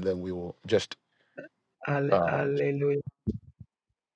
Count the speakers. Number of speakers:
two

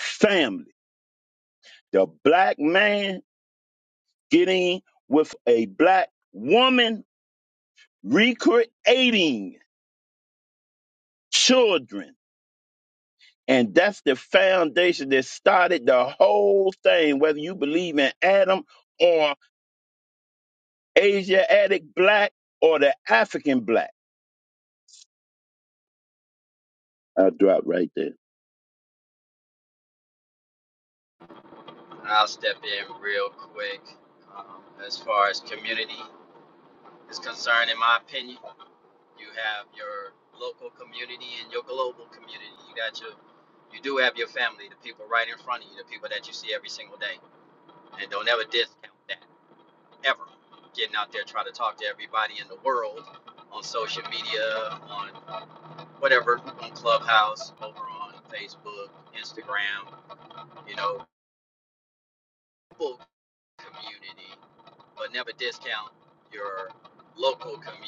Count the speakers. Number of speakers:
two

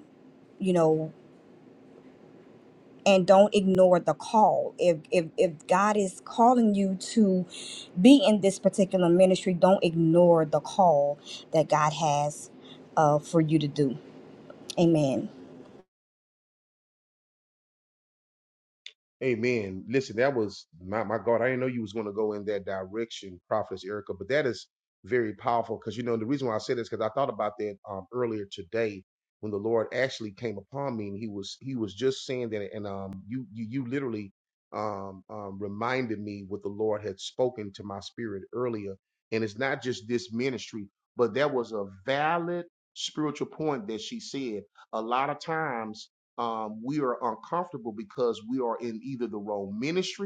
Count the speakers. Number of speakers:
two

